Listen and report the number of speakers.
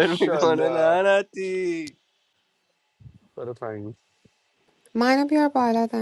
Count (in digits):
3